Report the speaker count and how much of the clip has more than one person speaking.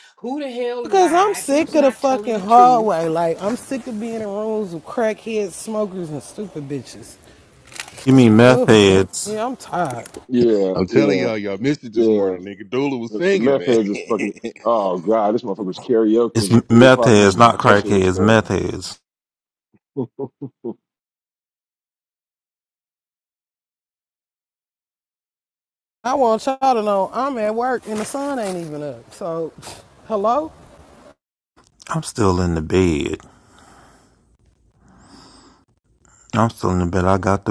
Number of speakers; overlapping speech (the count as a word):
five, about 16%